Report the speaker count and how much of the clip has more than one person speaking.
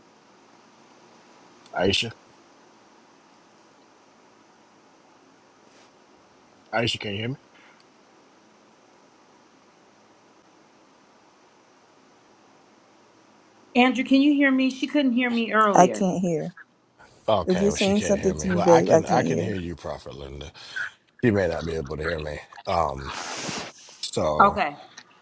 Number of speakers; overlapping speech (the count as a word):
three, about 10%